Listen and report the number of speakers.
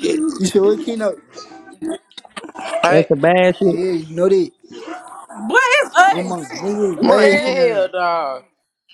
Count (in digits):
4